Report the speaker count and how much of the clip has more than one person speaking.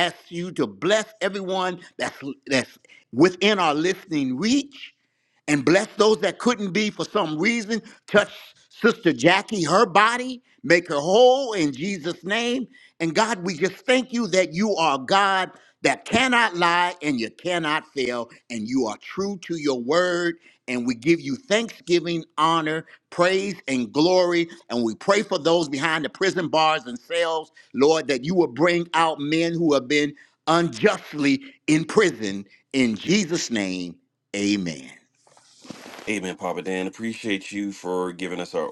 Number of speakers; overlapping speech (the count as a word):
two, no overlap